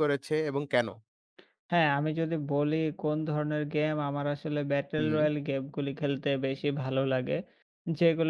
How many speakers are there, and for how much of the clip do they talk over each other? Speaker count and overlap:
two, about 4%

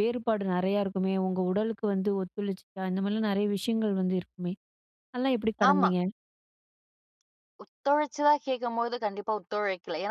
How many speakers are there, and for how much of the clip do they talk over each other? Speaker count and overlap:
two, about 3%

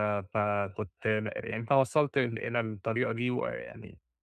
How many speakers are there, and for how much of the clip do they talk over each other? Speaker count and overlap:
one, no overlap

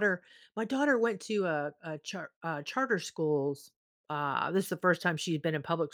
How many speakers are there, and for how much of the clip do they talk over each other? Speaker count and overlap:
one, no overlap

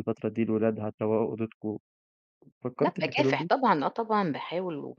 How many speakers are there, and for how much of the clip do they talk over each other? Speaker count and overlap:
two, about 14%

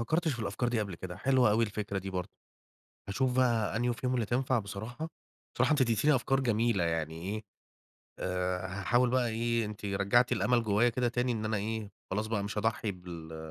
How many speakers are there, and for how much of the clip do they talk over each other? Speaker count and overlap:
one, no overlap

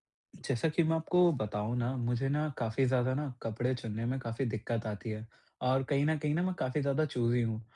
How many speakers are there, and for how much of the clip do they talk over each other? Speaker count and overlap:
one, no overlap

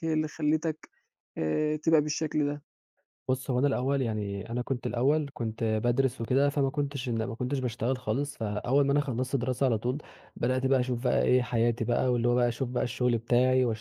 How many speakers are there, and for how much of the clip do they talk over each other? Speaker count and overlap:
two, no overlap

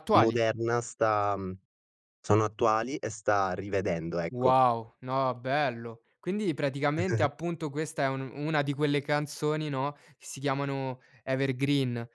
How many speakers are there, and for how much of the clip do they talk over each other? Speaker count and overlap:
two, about 4%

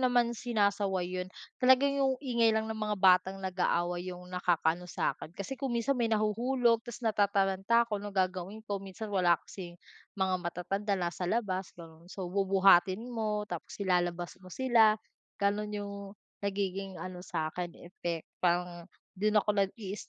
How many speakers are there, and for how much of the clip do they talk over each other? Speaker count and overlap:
one, no overlap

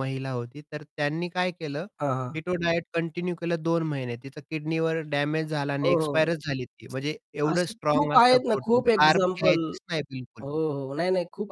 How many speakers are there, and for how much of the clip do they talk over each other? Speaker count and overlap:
two, about 23%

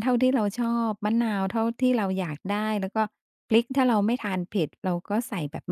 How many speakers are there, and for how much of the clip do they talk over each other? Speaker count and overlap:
one, no overlap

